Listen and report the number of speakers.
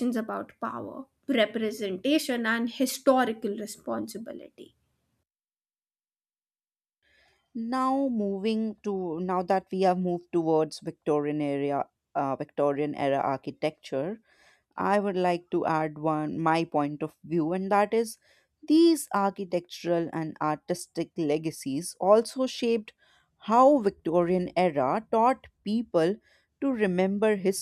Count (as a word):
two